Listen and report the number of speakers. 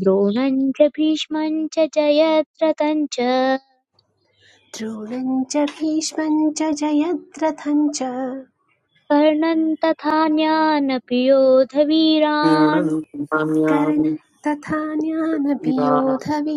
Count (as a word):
three